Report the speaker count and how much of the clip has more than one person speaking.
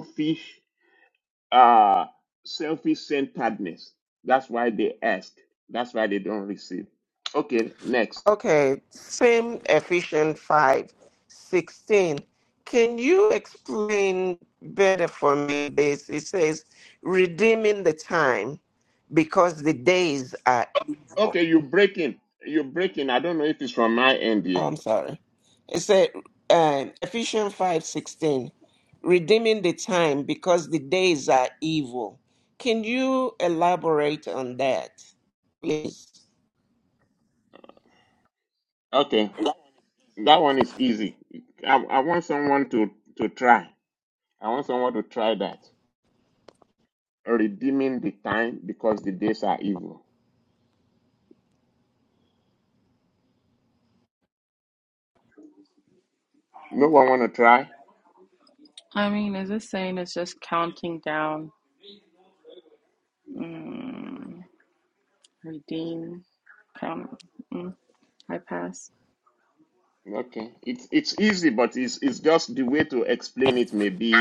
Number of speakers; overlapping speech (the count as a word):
three, under 1%